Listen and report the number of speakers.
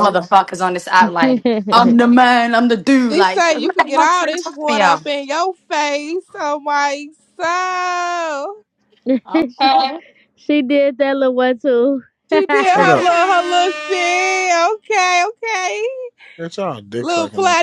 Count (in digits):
4